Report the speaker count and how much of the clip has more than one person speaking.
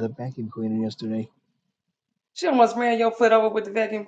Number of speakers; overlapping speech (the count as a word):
two, no overlap